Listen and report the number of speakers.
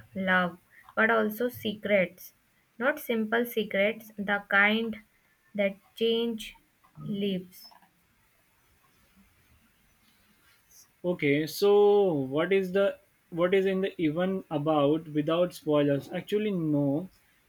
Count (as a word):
two